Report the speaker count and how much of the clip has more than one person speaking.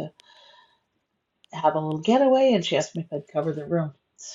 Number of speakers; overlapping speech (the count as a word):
one, no overlap